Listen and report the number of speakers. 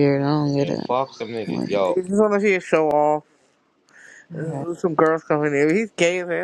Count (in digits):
3